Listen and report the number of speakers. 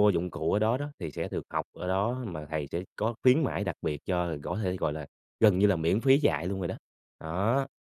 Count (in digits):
1